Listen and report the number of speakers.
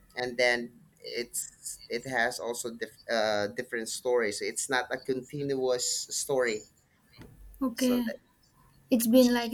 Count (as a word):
two